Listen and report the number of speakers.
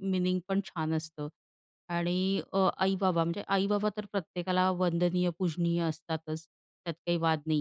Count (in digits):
1